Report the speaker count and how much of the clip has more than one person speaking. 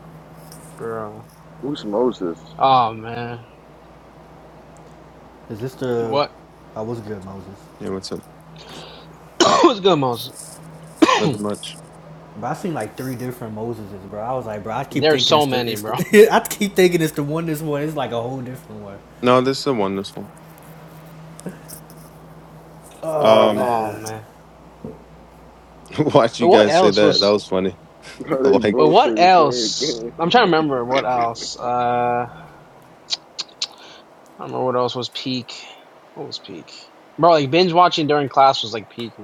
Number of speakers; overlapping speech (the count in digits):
4, about 12%